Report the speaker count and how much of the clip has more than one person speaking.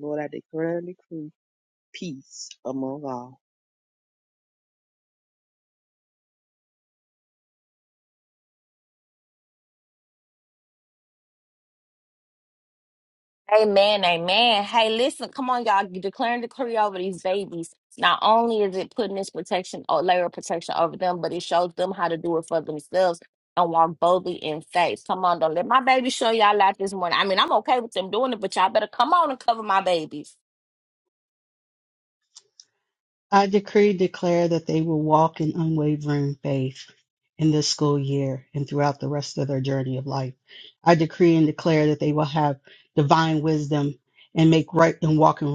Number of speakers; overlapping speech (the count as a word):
three, no overlap